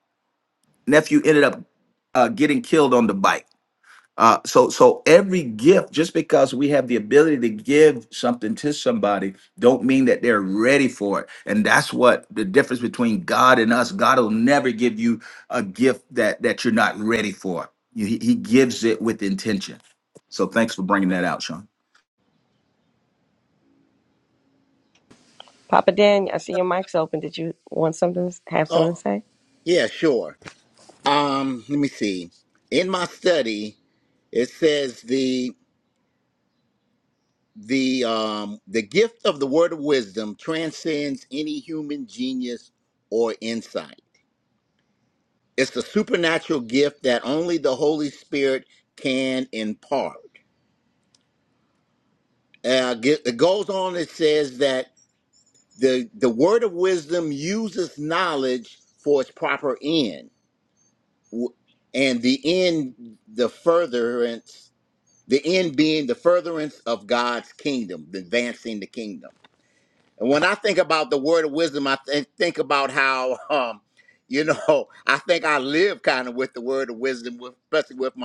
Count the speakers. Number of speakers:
three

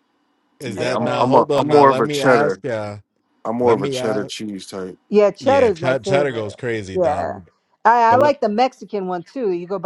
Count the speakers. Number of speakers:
three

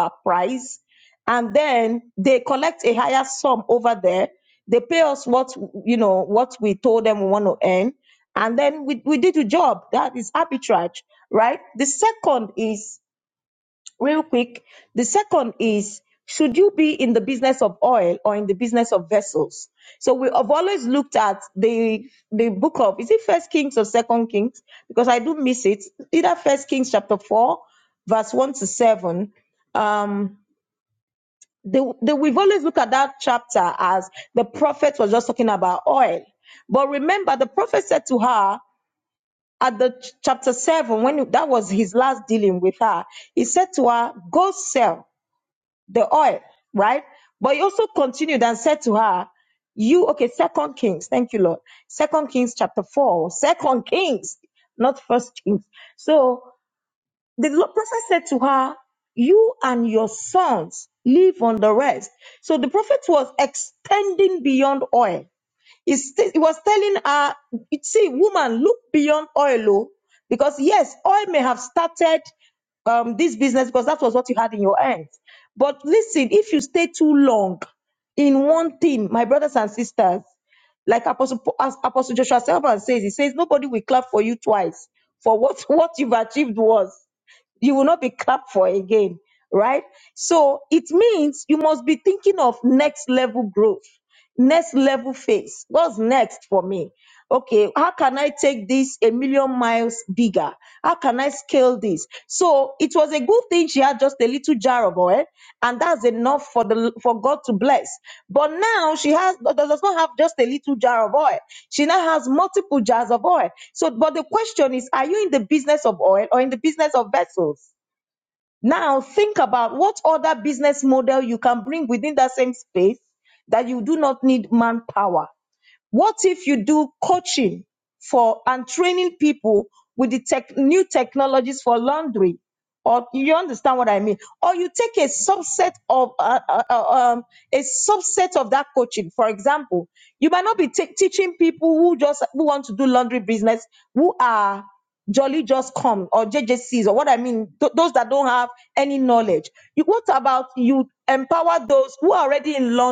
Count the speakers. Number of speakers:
one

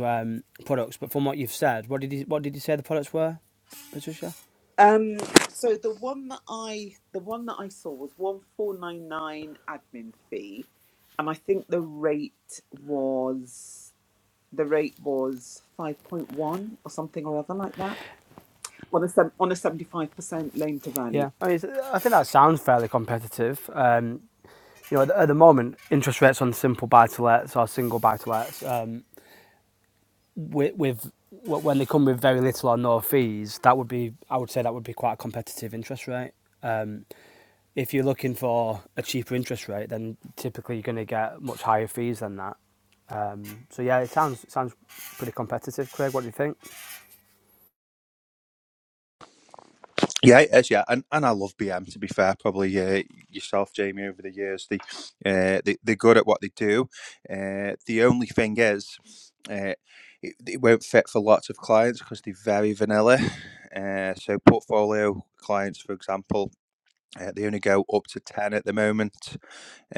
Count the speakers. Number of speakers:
three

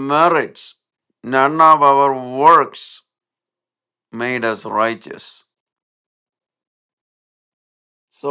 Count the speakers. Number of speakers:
one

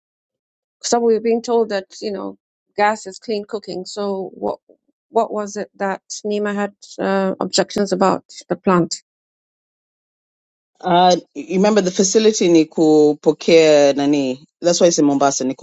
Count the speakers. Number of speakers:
two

